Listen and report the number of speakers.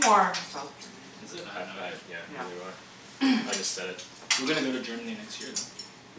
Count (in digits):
3